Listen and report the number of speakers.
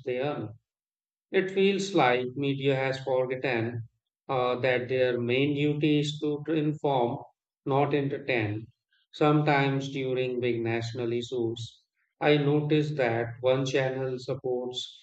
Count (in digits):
1